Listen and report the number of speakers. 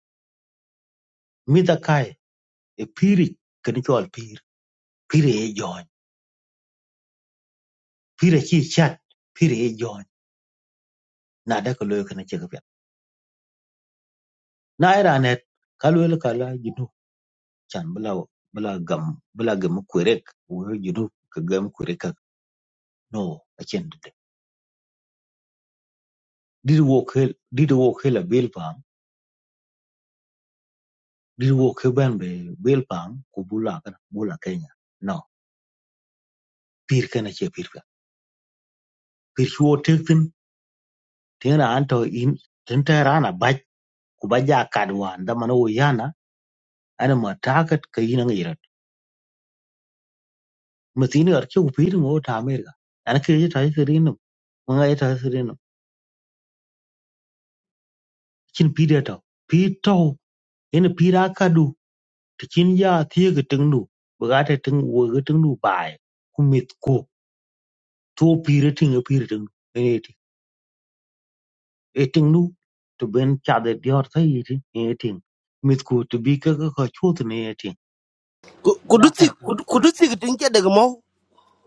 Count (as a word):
two